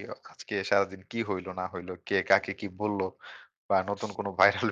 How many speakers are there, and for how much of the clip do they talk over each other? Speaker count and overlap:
1, no overlap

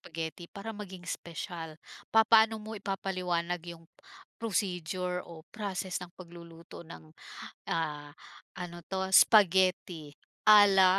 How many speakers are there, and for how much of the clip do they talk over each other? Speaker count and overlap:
1, no overlap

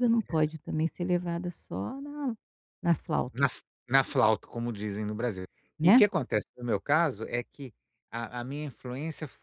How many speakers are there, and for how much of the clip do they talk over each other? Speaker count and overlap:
2, about 4%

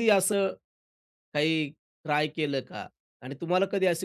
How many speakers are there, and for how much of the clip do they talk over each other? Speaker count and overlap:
1, no overlap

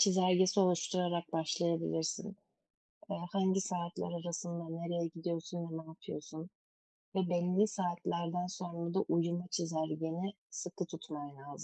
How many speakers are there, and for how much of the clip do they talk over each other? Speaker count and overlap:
1, no overlap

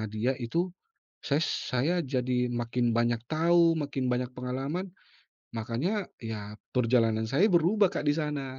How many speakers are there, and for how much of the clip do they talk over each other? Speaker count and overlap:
1, no overlap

